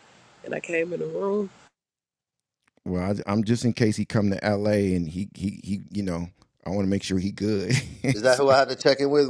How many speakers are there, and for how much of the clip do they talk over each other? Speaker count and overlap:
3, about 2%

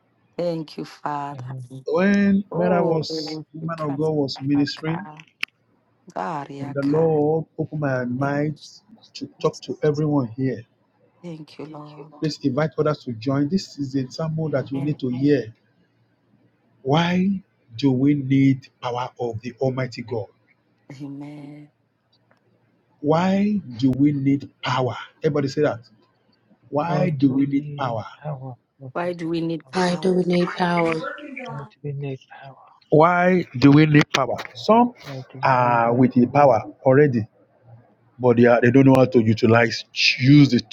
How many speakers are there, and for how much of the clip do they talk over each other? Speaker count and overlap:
4, about 10%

